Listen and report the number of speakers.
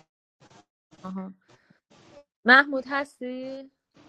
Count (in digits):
1